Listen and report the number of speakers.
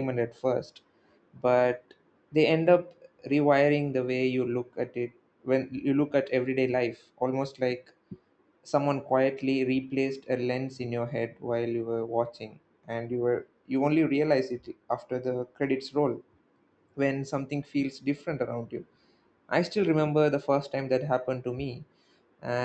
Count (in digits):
1